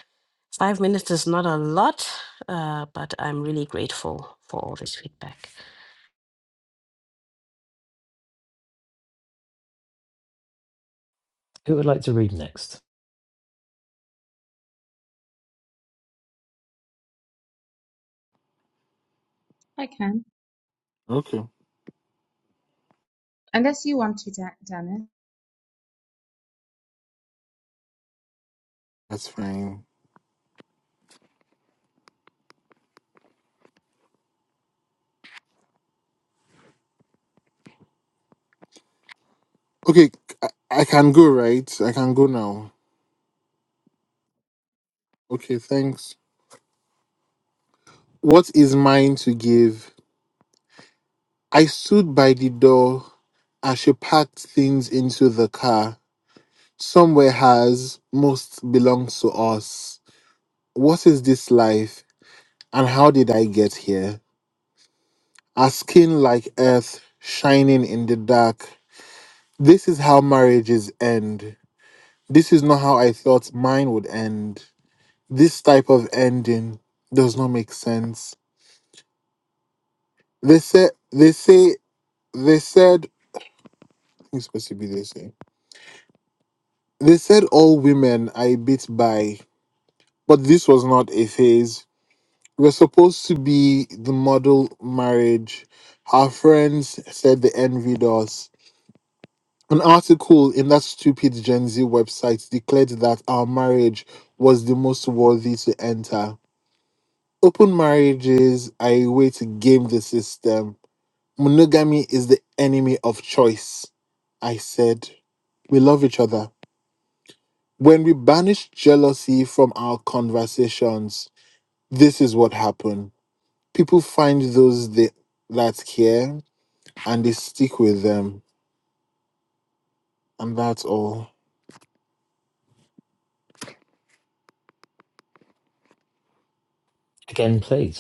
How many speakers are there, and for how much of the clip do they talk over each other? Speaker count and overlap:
4, no overlap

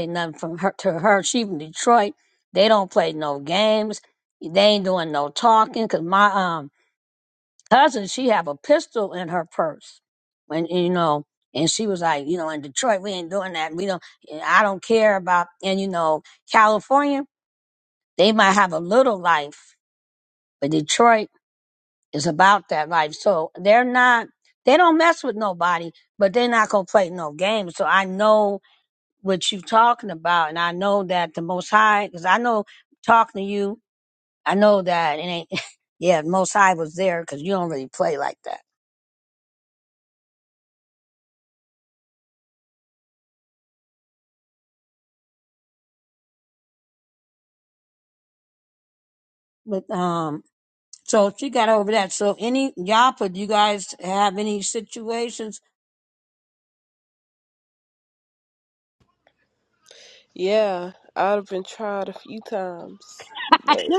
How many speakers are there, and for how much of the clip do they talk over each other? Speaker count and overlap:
2, under 1%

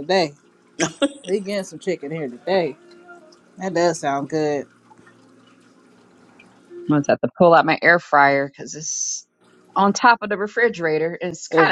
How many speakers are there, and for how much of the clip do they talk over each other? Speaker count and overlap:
2, about 2%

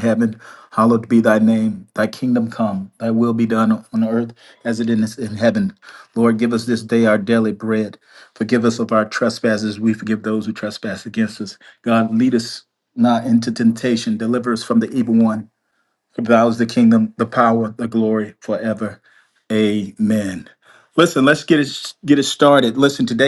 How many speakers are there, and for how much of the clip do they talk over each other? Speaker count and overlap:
1, no overlap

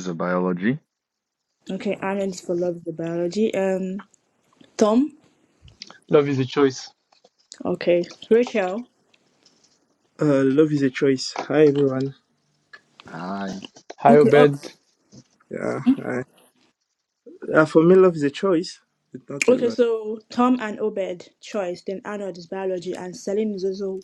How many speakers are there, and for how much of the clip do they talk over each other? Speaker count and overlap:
4, about 3%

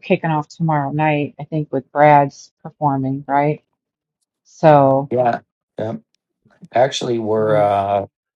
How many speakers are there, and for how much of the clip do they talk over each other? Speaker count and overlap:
2, about 3%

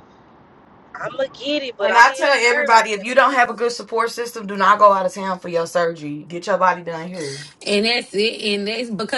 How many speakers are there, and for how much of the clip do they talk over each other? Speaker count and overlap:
3, about 19%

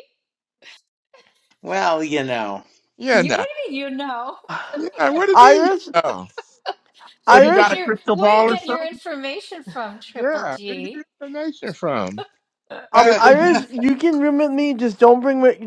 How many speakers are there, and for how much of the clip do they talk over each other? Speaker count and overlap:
4, about 23%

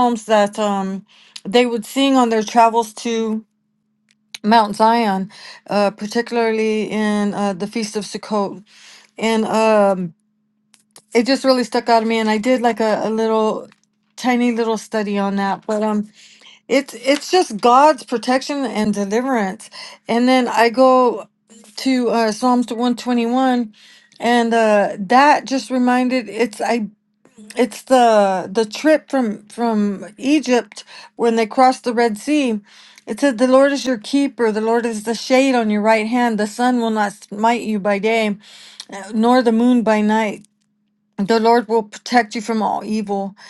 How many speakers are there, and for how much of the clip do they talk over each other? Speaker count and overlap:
1, no overlap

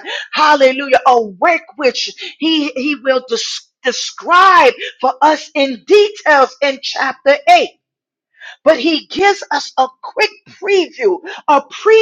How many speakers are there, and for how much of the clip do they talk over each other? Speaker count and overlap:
1, no overlap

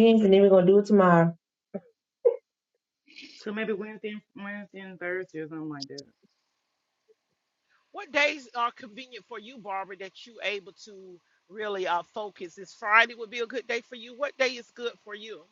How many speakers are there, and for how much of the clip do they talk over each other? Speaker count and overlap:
3, no overlap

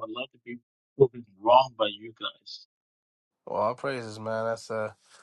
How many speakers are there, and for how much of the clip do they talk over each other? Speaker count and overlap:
2, no overlap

